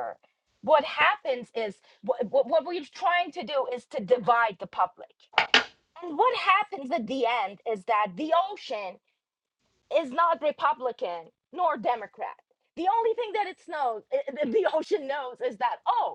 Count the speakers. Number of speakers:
1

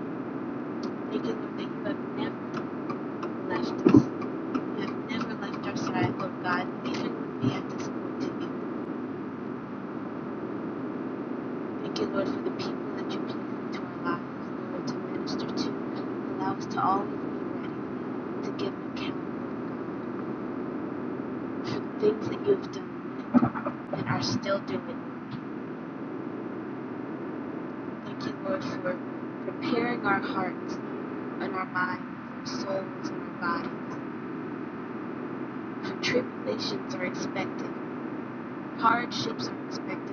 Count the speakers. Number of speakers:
1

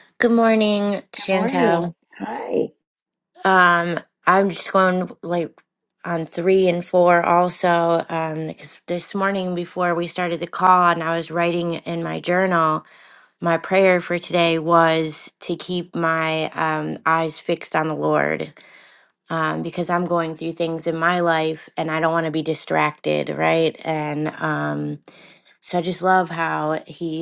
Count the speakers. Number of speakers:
2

